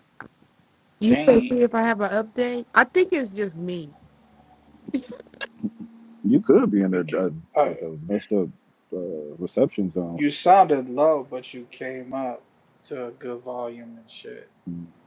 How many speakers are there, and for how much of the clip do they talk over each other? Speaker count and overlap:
3, about 10%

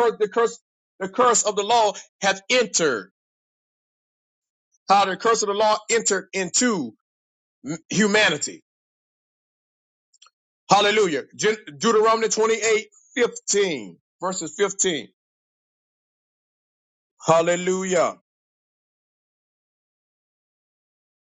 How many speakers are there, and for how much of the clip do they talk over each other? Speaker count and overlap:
1, no overlap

